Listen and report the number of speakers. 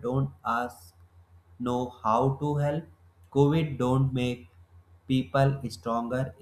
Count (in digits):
1